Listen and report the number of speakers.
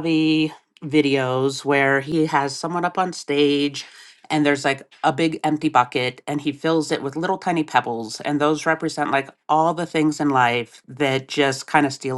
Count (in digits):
1